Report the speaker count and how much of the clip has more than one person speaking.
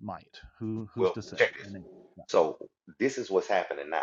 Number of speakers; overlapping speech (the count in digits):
2, about 16%